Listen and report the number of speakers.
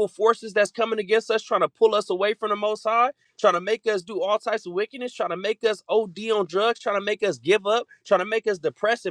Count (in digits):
1